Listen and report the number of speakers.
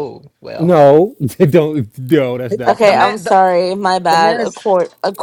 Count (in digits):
3